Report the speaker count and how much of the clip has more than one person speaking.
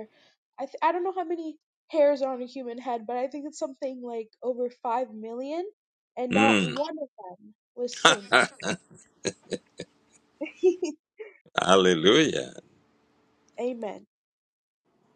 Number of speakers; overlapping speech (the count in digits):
2, about 3%